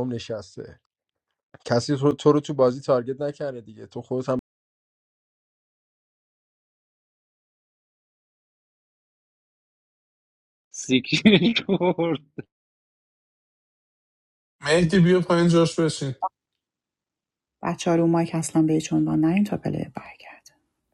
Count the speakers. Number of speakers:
4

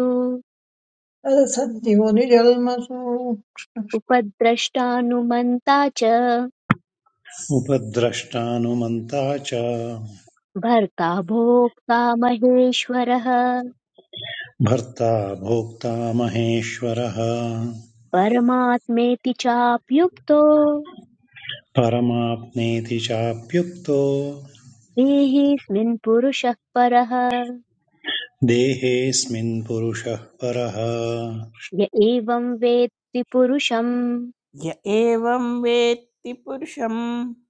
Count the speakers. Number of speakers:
4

